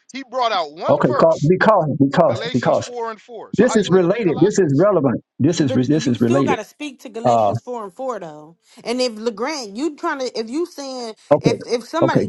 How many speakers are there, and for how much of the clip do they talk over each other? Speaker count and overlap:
3, about 34%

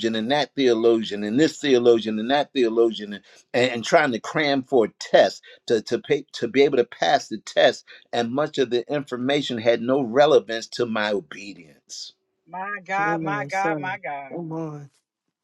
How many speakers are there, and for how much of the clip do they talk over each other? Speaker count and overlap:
3, about 6%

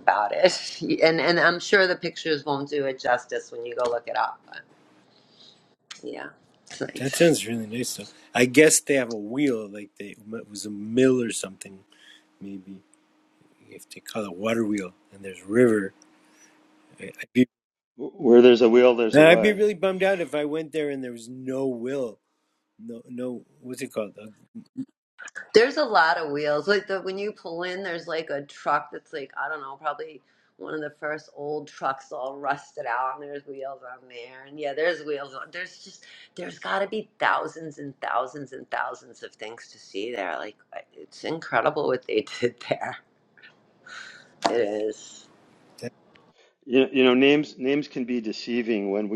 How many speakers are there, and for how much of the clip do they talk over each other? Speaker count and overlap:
3, about 2%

